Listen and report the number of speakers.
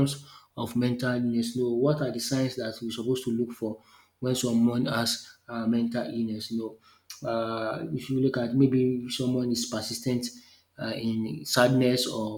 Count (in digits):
1